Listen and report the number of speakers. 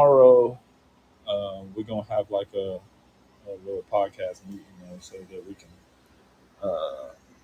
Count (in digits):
1